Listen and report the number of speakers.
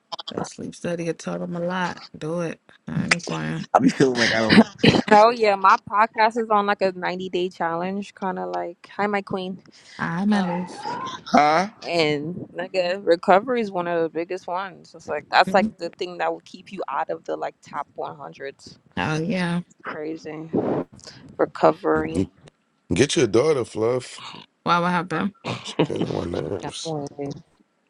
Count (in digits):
4